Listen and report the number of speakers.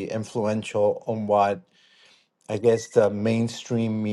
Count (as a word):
one